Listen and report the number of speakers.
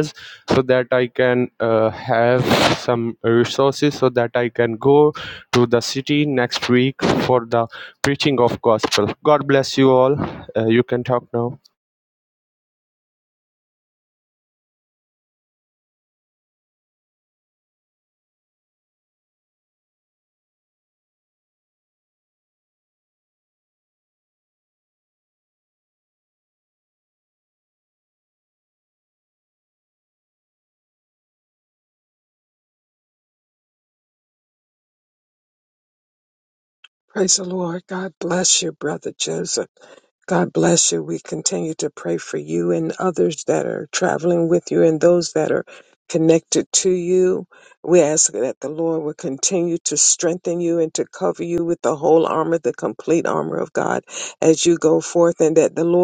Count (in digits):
2